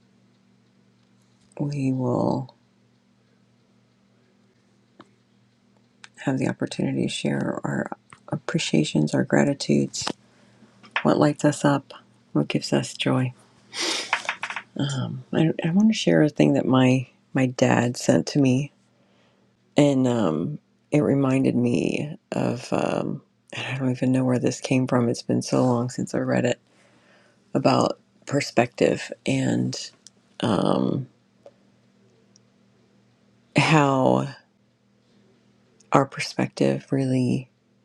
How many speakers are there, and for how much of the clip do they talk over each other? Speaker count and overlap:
1, no overlap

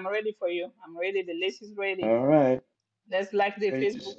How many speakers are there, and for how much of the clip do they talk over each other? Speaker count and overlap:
2, about 14%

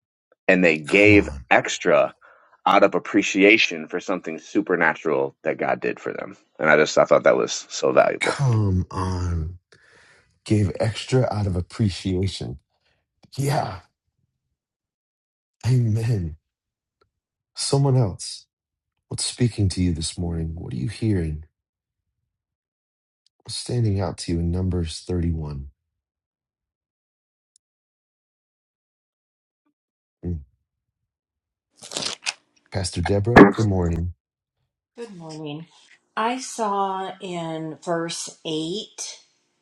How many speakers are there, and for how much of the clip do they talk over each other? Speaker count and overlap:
3, about 2%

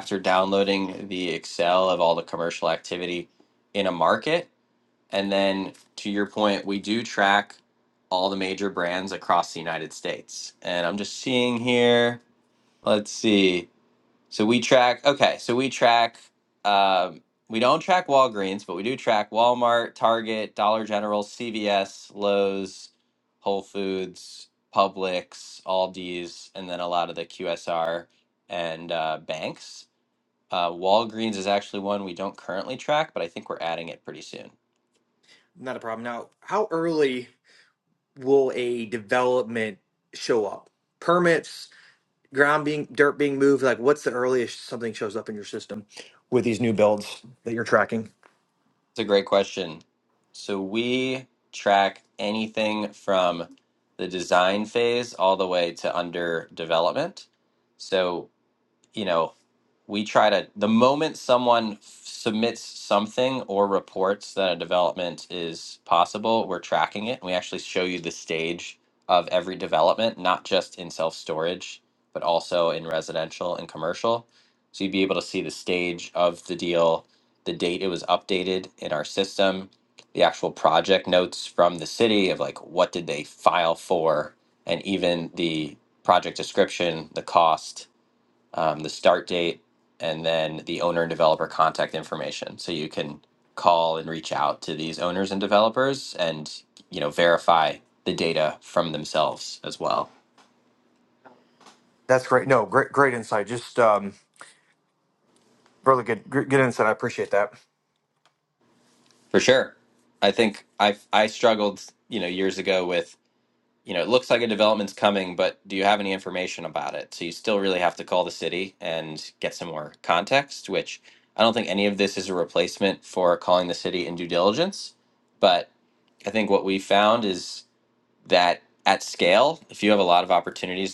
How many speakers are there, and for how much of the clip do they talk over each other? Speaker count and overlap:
2, no overlap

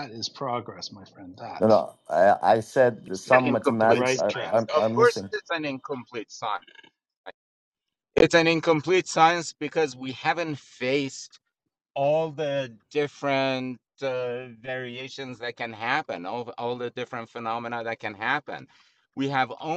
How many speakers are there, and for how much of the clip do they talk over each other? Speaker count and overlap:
3, about 11%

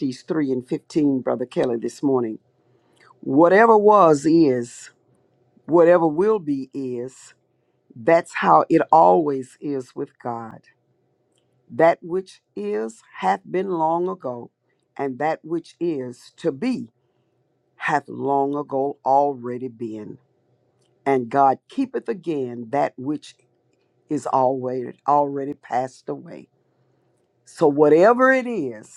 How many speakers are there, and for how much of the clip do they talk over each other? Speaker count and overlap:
1, no overlap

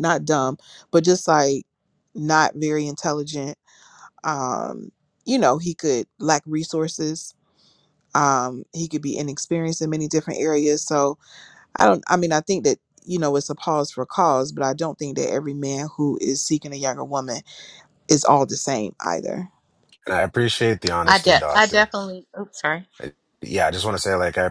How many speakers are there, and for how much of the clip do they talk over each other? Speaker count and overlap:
3, about 3%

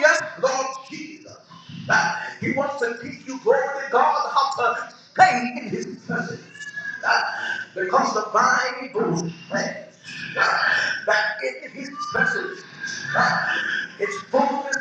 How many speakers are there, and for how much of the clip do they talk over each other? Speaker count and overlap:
1, no overlap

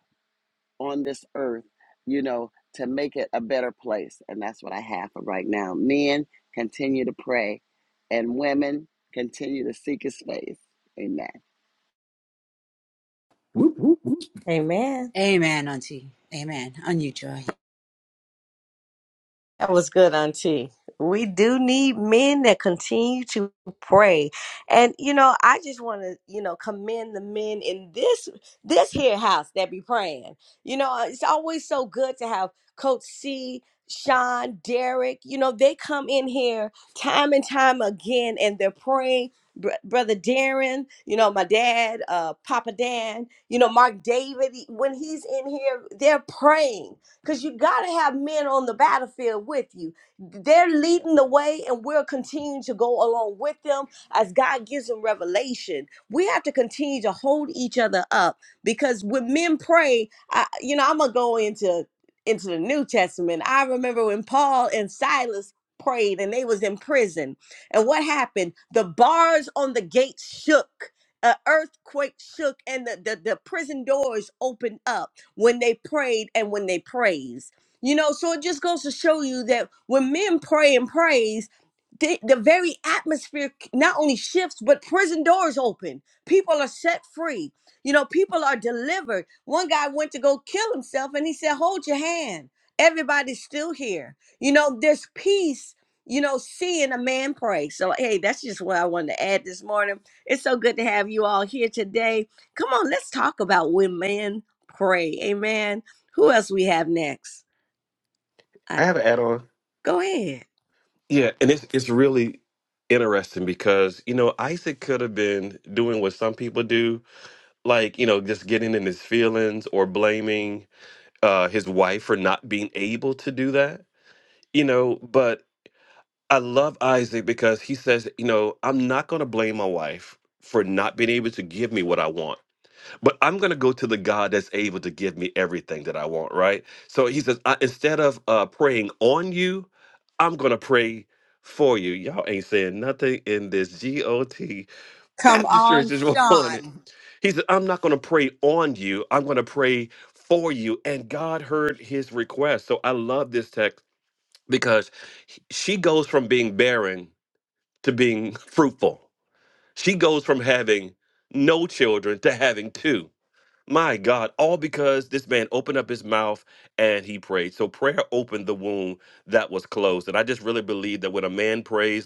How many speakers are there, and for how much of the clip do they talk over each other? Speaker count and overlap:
4, about 1%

